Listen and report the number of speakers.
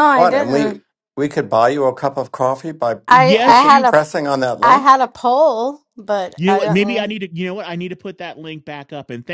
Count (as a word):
three